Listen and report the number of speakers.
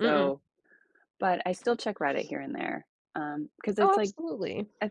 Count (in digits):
2